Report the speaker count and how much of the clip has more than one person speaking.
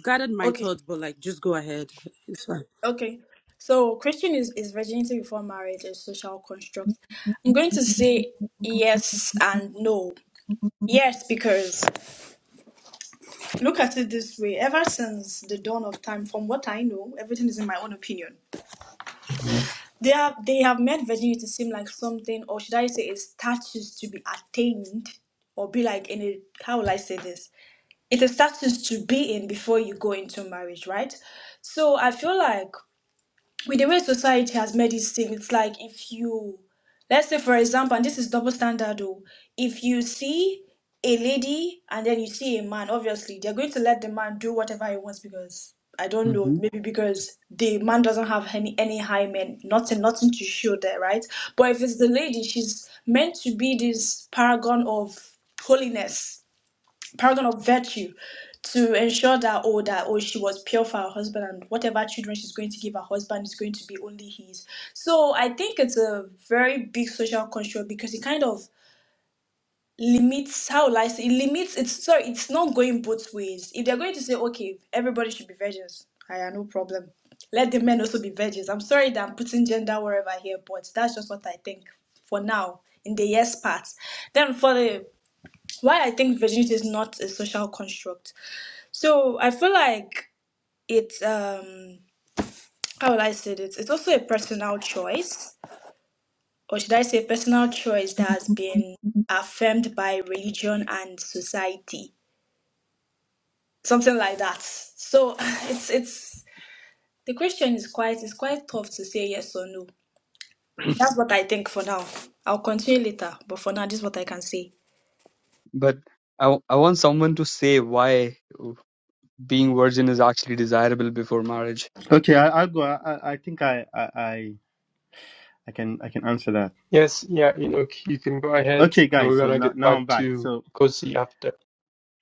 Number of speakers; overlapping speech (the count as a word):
five, about 2%